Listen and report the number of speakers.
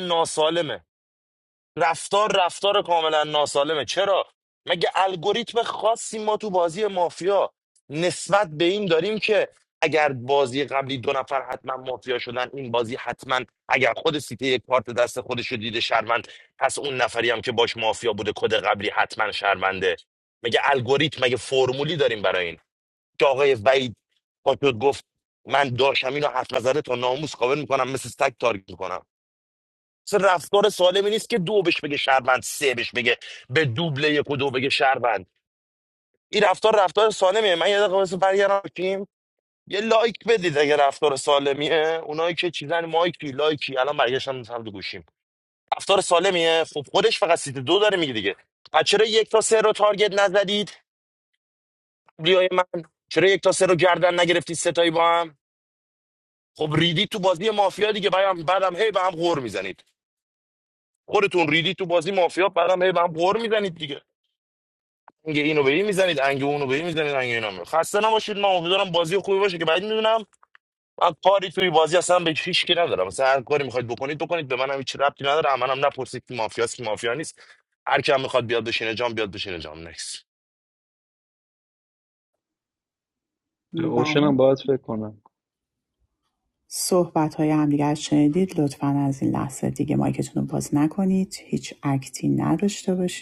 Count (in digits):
3